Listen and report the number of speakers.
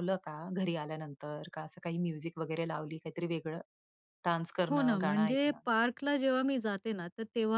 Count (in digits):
2